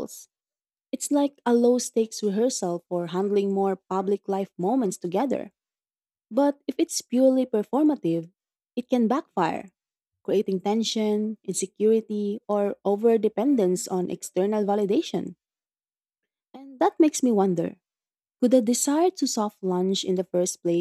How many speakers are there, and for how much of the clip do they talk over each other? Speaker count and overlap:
1, no overlap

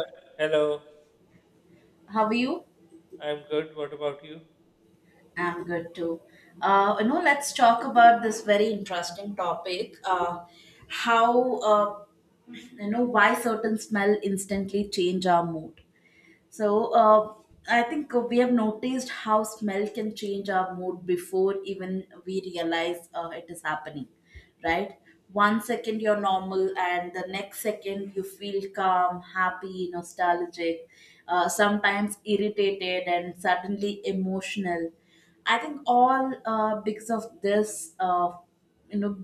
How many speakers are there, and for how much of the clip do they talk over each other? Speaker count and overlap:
2, no overlap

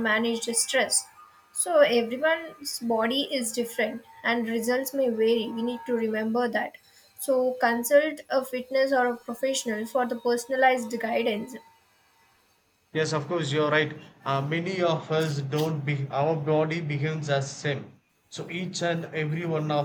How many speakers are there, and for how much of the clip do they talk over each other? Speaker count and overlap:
2, no overlap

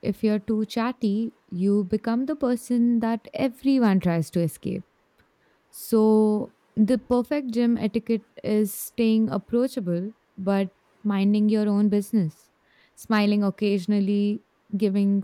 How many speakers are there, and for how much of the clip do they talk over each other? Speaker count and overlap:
1, no overlap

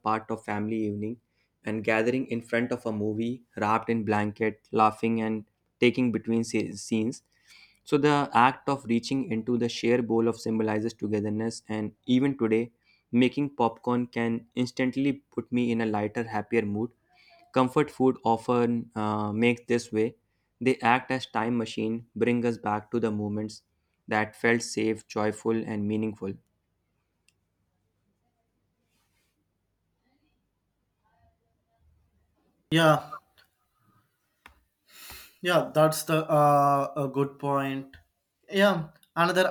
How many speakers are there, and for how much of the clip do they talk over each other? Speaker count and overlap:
2, no overlap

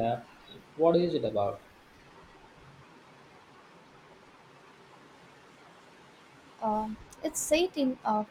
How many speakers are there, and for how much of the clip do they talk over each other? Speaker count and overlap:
2, no overlap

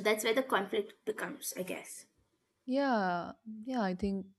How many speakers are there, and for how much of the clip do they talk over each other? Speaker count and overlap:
2, no overlap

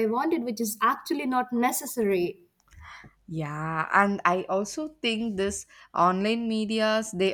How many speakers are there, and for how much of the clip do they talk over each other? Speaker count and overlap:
2, no overlap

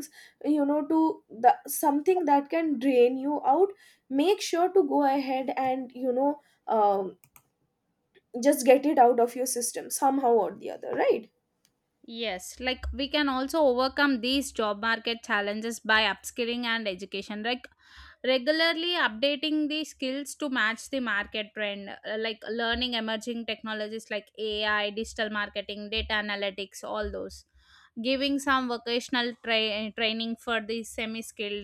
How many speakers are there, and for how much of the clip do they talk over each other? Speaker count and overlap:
2, no overlap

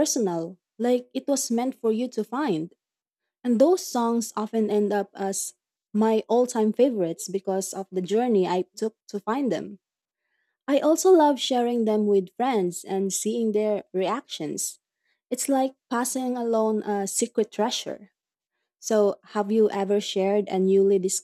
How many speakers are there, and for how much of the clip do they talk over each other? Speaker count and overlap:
1, no overlap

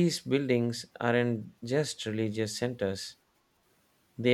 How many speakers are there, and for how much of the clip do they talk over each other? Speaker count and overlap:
1, no overlap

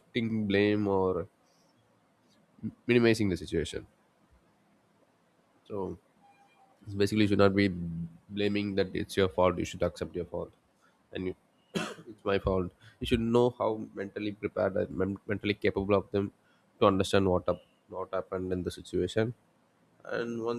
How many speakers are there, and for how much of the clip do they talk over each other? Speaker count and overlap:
1, no overlap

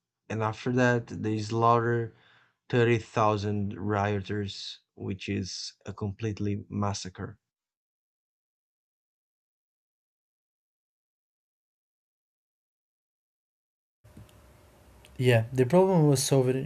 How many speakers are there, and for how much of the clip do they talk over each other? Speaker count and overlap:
2, no overlap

